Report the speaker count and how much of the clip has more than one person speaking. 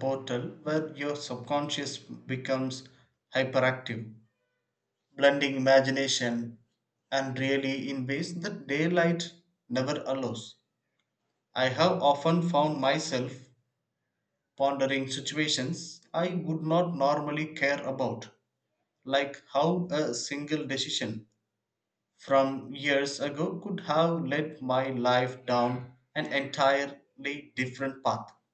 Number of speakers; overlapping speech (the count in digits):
1, no overlap